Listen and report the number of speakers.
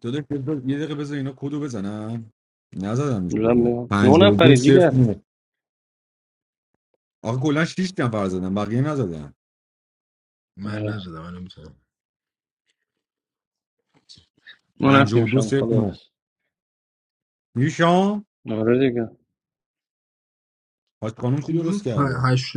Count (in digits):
3